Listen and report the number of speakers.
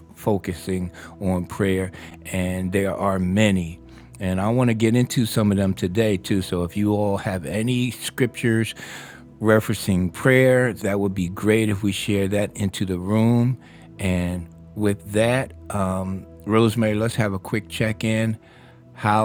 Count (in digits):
1